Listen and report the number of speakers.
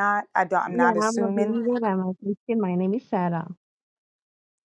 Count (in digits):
2